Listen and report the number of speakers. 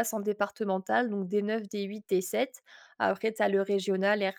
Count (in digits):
1